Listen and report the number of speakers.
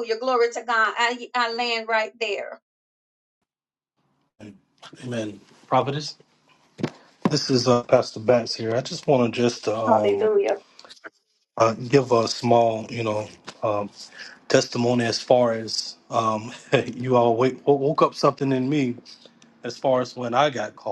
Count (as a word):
two